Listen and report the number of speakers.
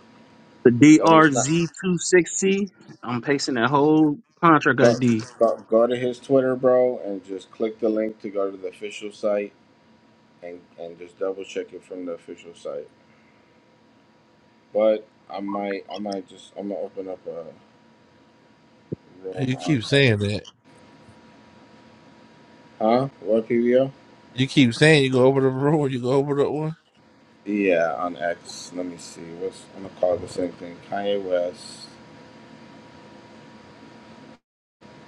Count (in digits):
3